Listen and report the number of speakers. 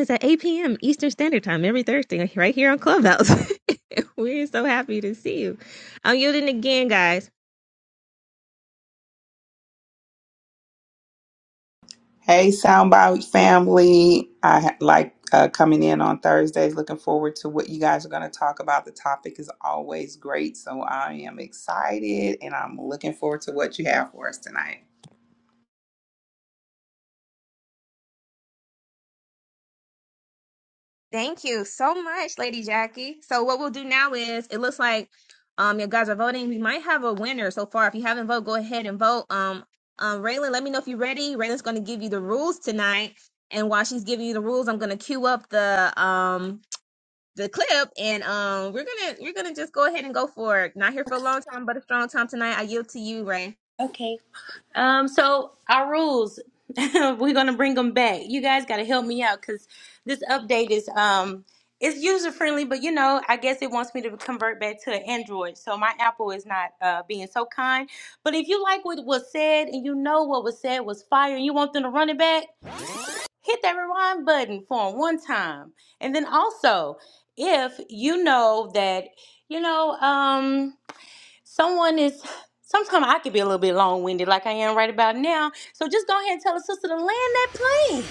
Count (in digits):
3